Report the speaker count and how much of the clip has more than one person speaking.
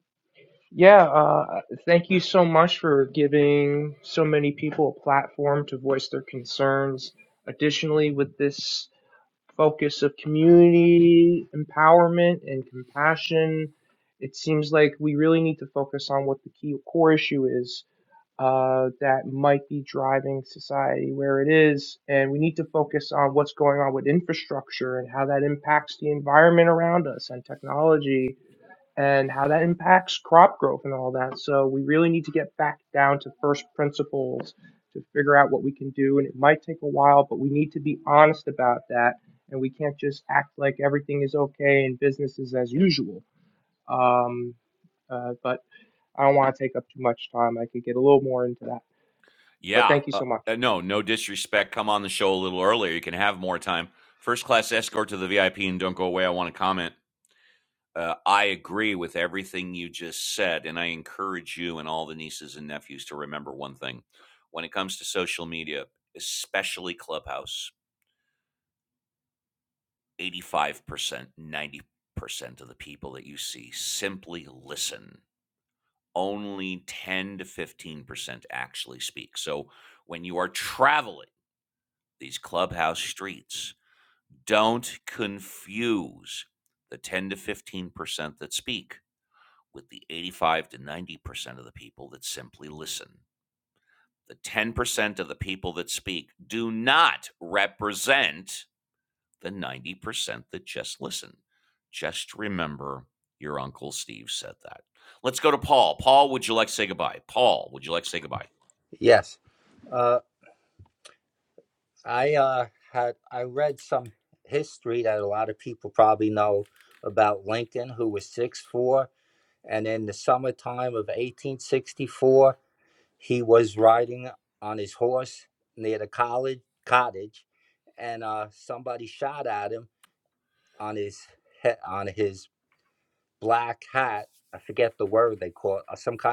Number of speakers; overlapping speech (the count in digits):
3, under 1%